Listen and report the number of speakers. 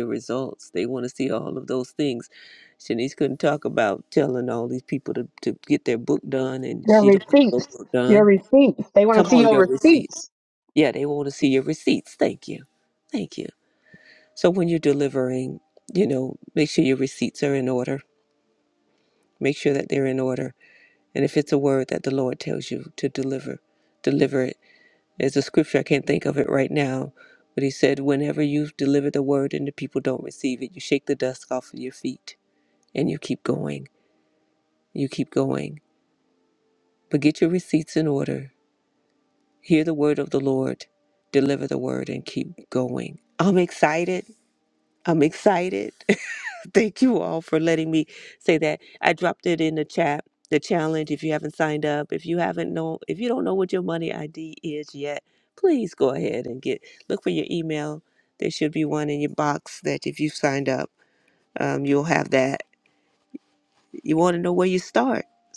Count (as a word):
two